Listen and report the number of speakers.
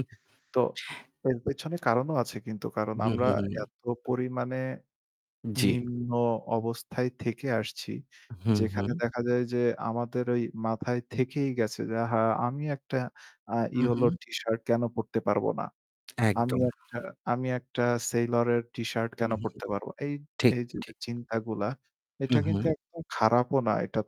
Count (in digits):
2